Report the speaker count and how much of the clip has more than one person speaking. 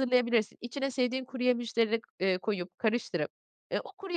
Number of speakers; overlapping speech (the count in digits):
1, no overlap